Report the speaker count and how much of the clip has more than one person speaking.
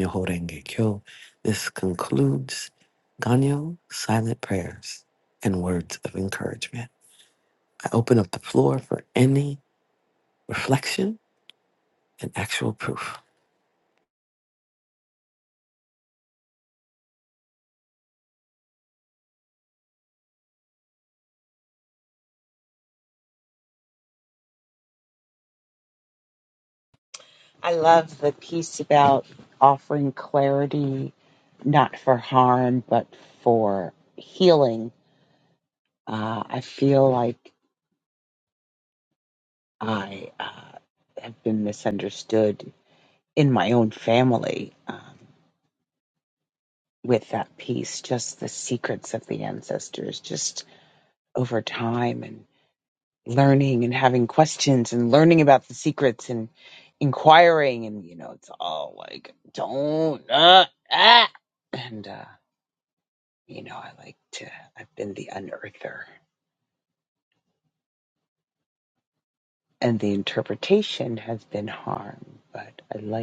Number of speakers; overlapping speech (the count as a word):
two, no overlap